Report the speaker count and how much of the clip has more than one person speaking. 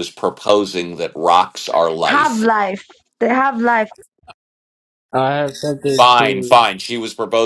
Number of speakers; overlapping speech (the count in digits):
3, about 13%